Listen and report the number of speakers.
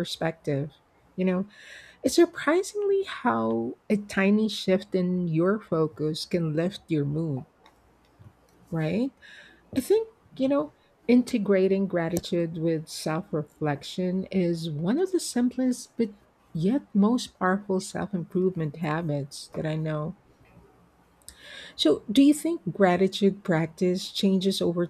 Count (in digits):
1